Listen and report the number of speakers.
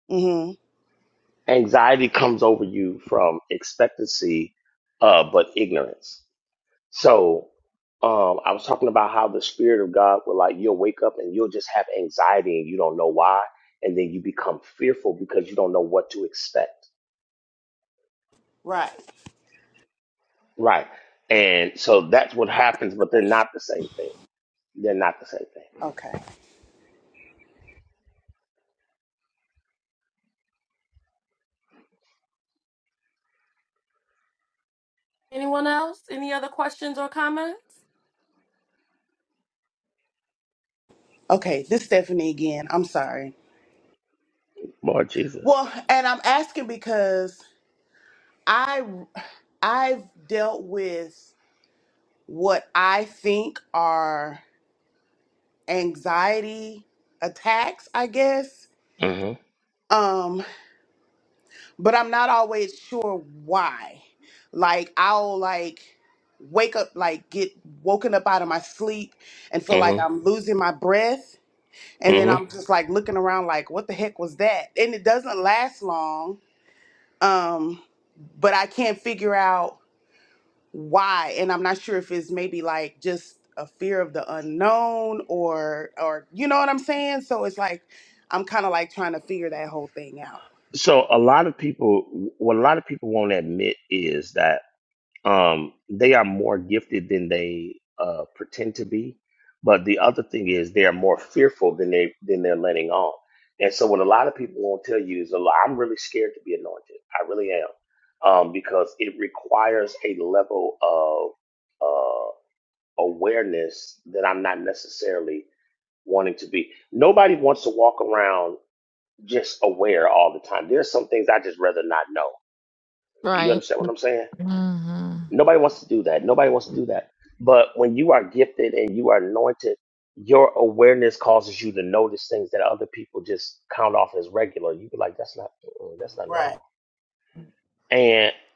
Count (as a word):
four